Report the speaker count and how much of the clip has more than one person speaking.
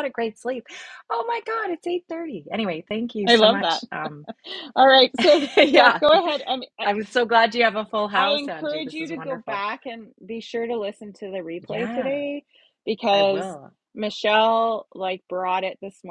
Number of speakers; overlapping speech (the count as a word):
two, about 21%